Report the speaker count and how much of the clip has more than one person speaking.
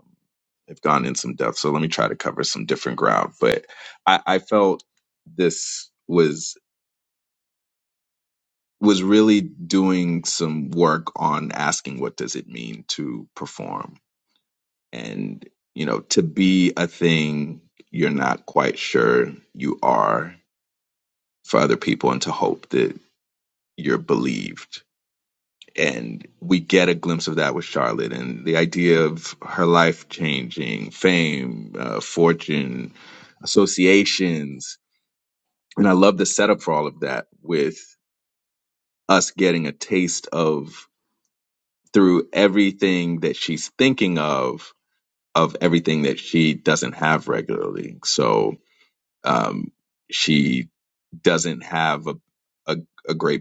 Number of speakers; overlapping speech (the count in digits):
1, no overlap